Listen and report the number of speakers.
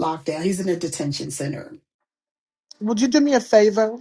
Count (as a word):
two